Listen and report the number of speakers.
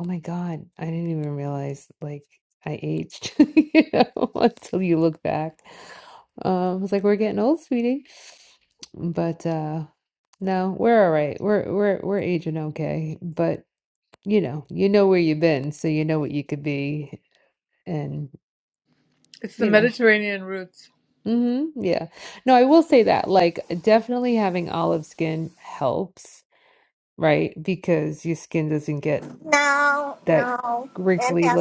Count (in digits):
3